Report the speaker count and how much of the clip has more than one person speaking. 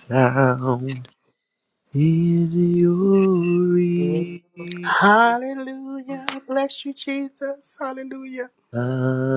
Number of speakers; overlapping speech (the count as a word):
two, no overlap